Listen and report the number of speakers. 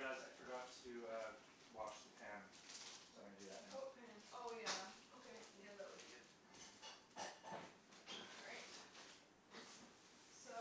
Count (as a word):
two